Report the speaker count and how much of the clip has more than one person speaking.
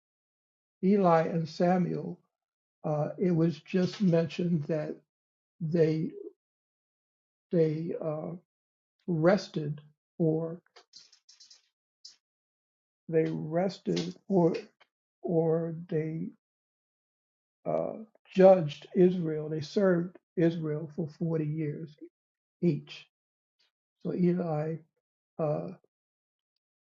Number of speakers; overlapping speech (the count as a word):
one, no overlap